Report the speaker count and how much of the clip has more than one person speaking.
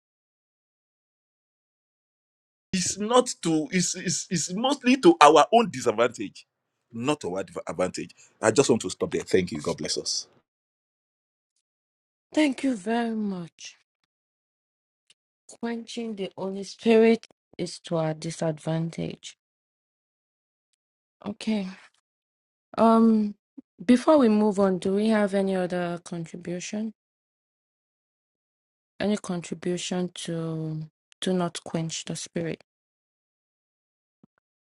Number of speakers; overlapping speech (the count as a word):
two, no overlap